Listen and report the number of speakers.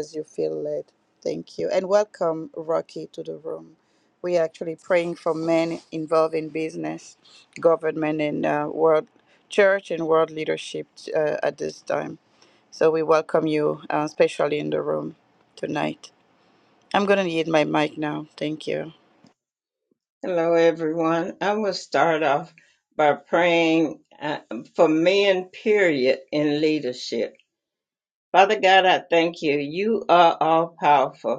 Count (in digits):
2